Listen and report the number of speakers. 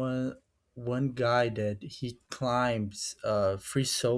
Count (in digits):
1